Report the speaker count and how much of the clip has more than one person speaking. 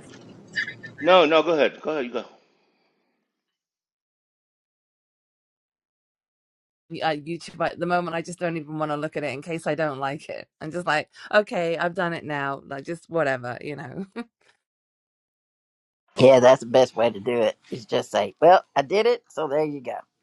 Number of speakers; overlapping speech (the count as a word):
three, no overlap